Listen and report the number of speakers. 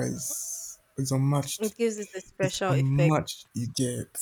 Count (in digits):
2